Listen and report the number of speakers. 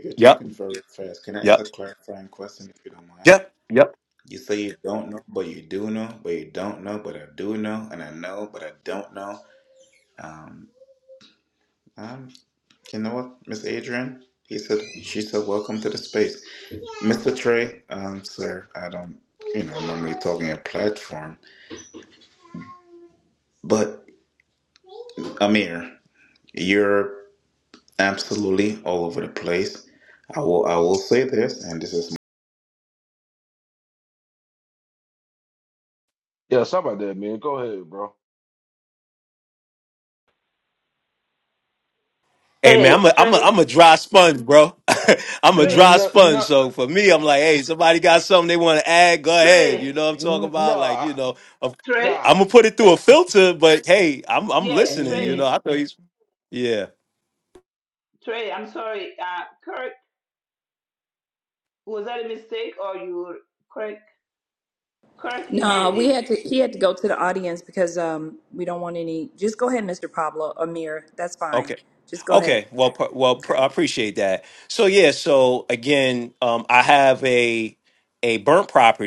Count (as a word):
five